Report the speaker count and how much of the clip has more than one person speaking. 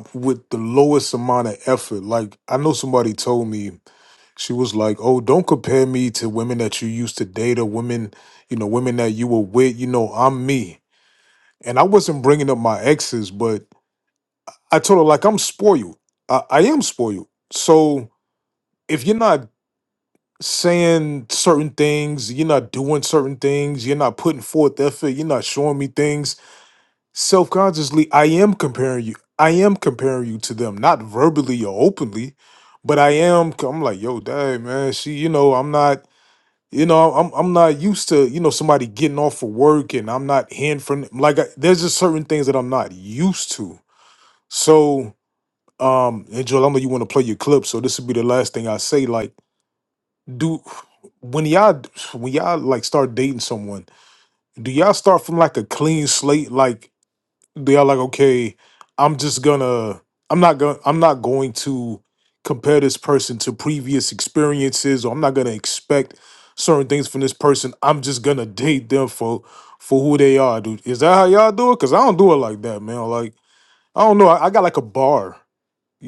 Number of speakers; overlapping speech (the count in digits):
1, no overlap